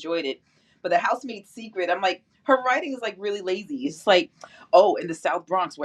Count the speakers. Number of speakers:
1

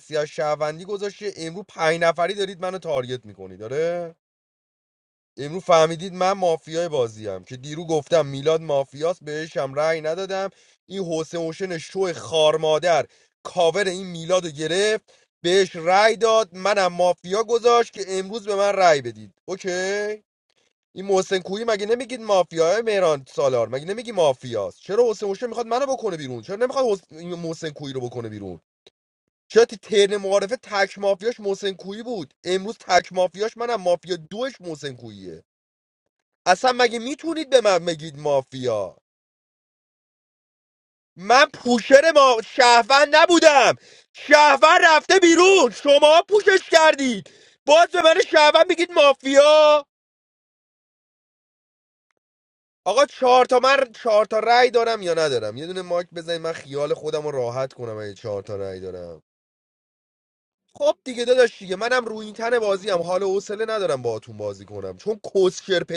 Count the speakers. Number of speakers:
1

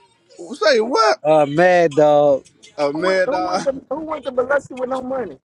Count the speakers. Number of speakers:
3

